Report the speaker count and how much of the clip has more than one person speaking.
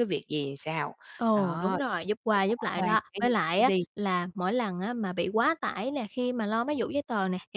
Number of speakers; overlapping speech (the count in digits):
2, about 26%